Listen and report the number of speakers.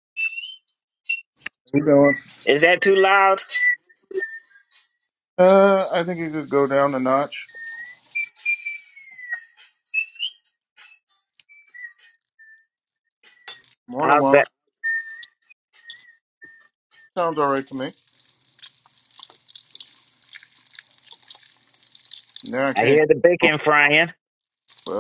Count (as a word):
two